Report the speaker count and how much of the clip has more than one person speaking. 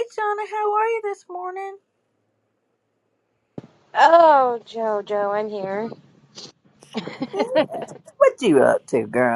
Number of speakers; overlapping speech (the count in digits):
2, no overlap